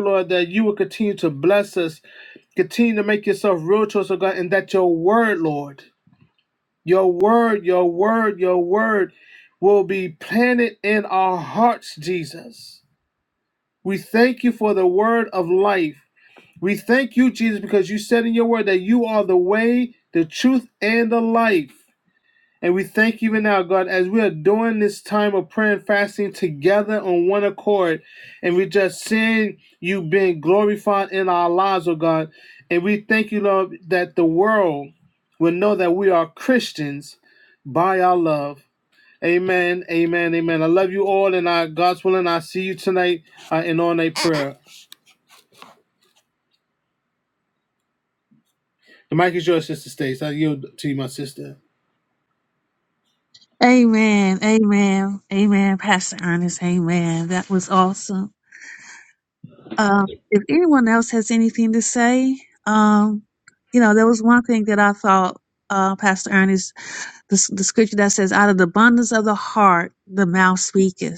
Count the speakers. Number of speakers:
2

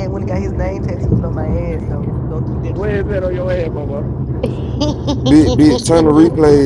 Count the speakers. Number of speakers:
3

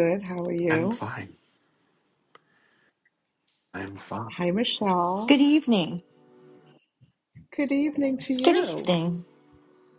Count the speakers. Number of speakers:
3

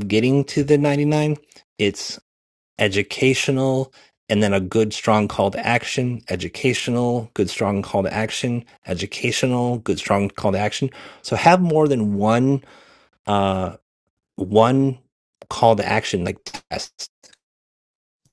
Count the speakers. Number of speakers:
1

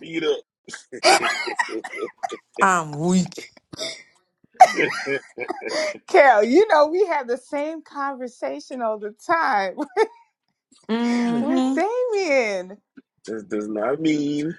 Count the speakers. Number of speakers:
3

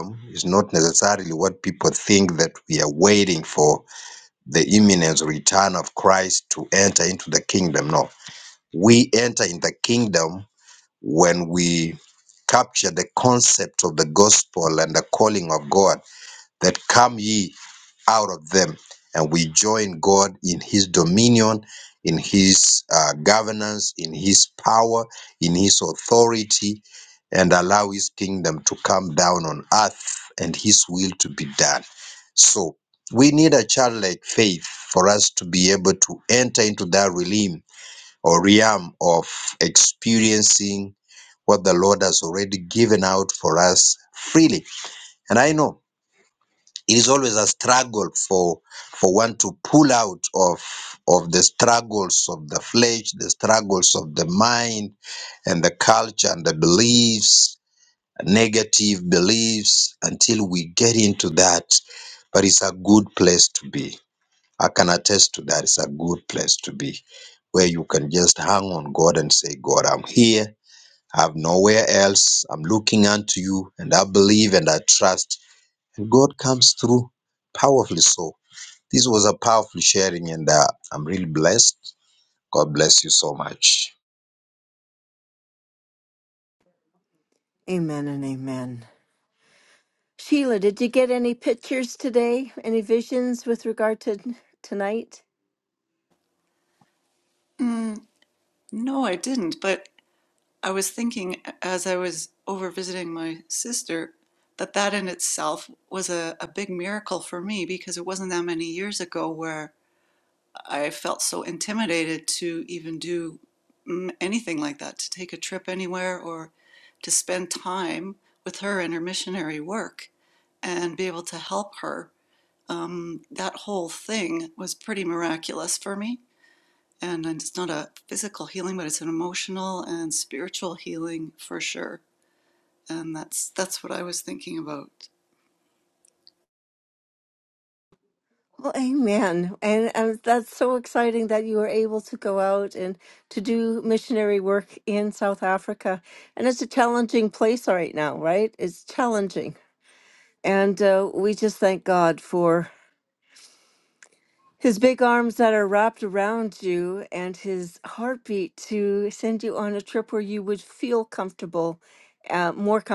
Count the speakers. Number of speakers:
3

